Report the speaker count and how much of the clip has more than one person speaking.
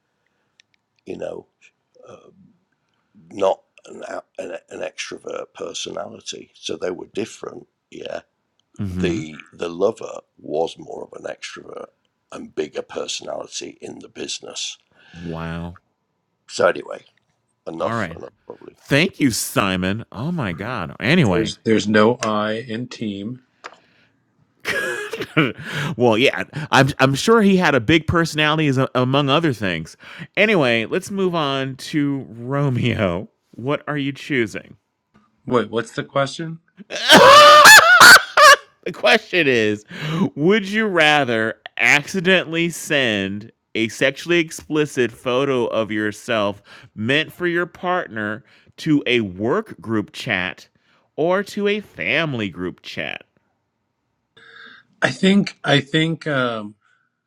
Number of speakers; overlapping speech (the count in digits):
3, about 2%